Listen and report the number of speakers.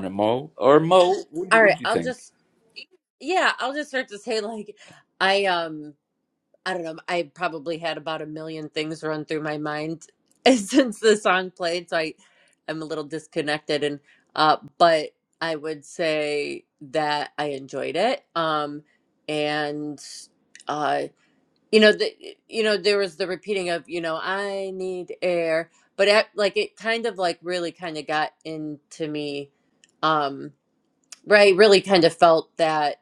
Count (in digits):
2